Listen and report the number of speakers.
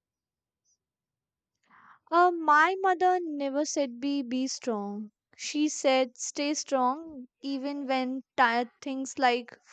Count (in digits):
1